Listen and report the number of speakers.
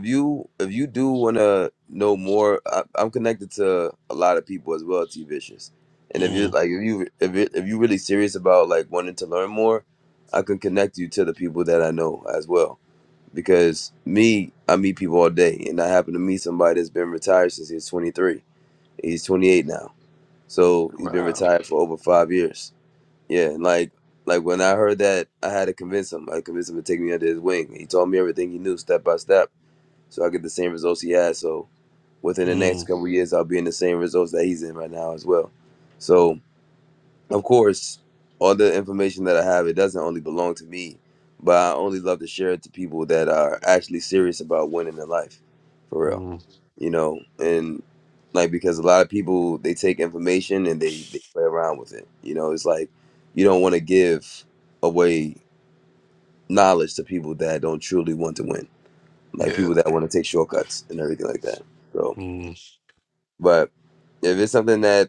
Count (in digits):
2